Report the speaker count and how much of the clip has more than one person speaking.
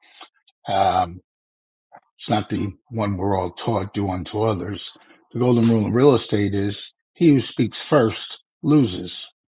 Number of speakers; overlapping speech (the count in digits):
1, no overlap